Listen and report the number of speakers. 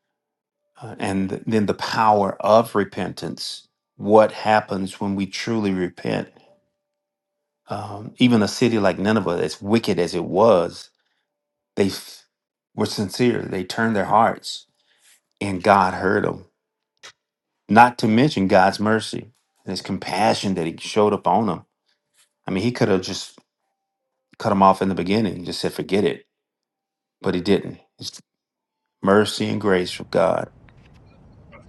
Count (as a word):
one